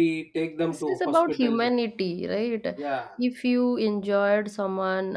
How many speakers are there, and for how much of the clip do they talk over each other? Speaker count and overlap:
2, about 20%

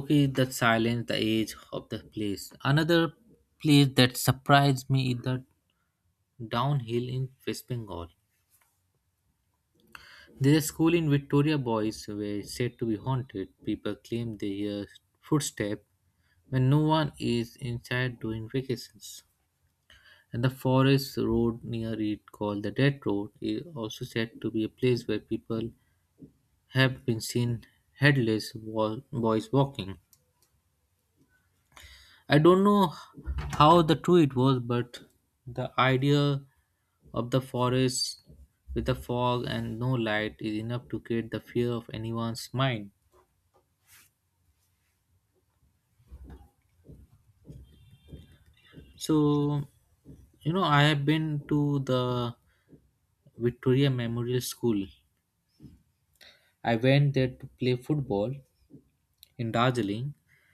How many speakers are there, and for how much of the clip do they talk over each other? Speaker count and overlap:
1, no overlap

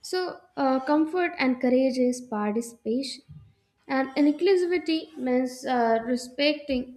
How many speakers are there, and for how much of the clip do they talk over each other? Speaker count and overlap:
1, no overlap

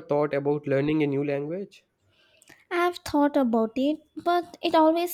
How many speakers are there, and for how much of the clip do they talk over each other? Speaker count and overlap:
2, no overlap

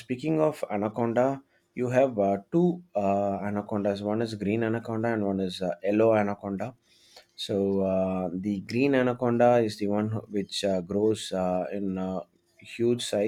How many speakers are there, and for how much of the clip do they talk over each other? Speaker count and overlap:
1, no overlap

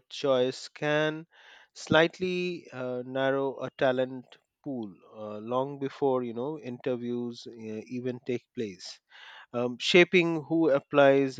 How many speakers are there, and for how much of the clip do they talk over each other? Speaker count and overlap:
1, no overlap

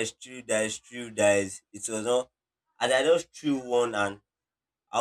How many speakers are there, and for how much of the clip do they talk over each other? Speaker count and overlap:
1, no overlap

